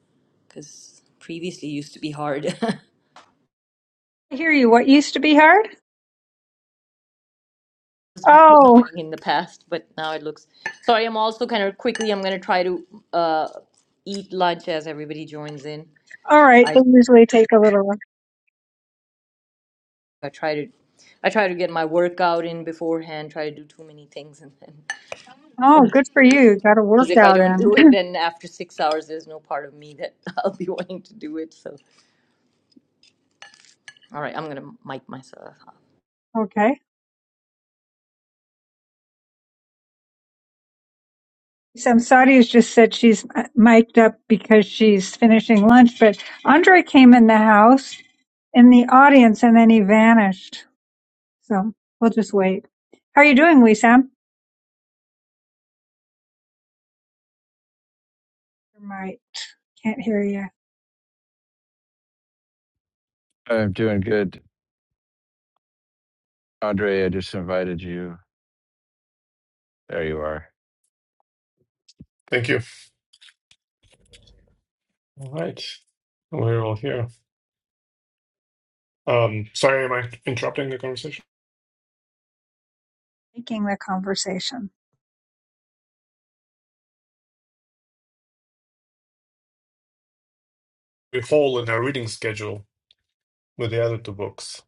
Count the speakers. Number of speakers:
four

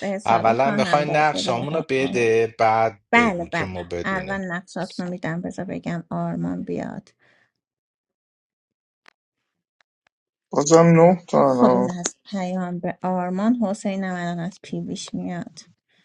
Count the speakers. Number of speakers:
three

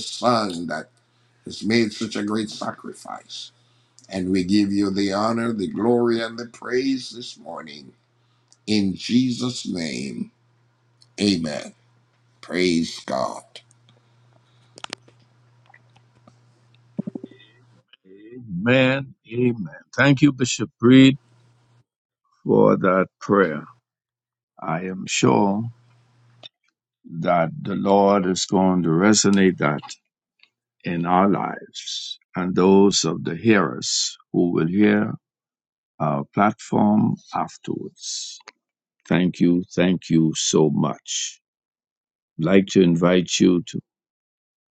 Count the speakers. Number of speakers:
two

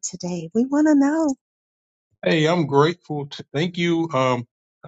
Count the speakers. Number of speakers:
two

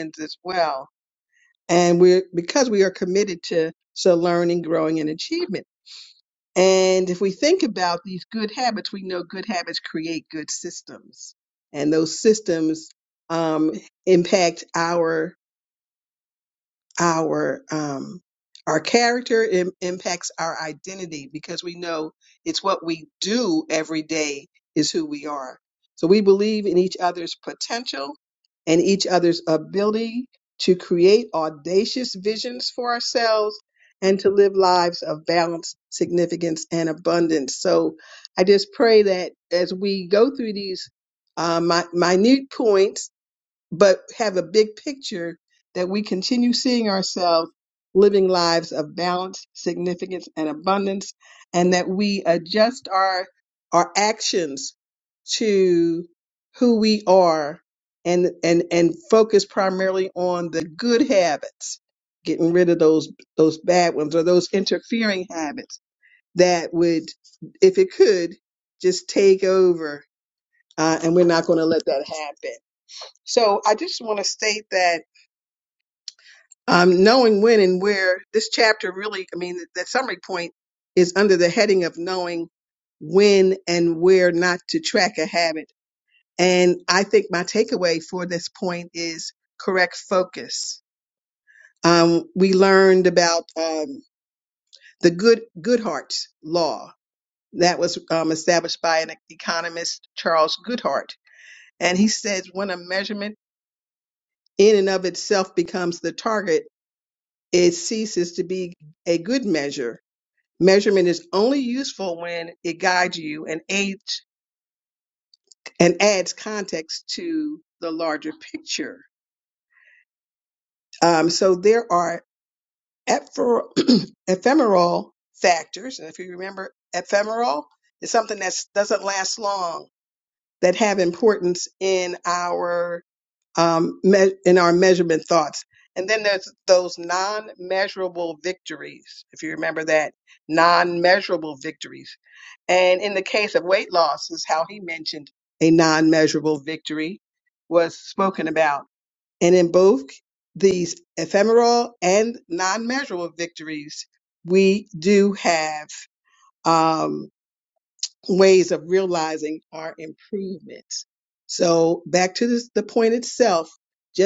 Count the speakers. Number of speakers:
one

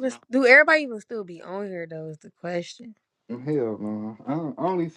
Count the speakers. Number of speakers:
two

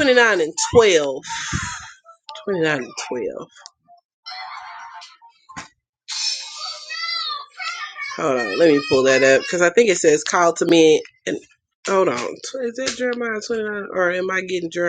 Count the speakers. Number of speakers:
one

